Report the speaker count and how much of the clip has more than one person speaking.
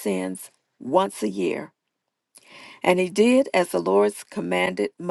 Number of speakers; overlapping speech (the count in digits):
1, no overlap